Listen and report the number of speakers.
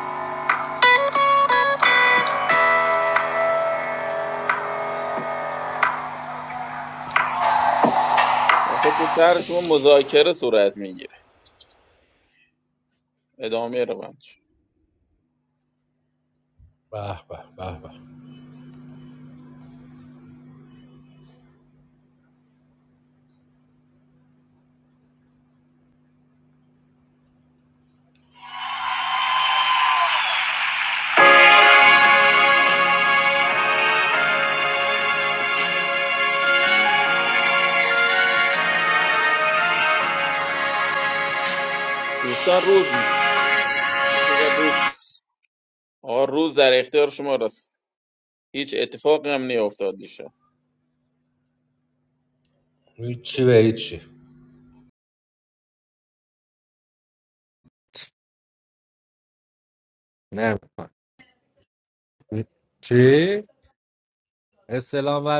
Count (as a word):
two